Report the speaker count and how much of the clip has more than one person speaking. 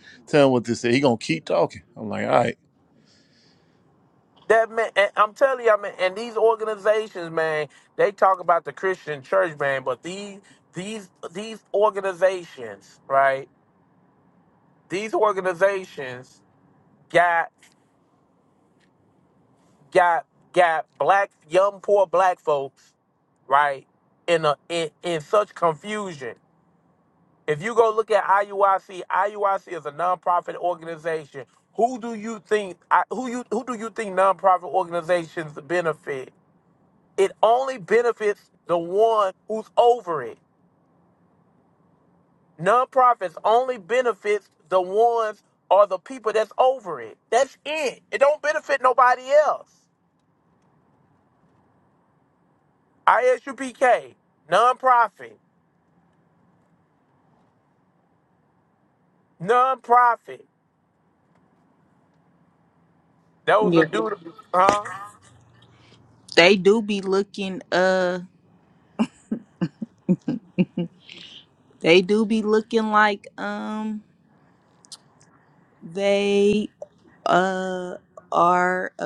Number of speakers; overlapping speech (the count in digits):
3, under 1%